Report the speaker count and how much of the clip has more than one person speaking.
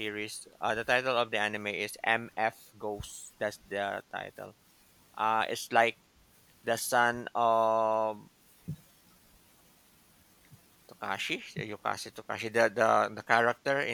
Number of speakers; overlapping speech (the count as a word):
one, no overlap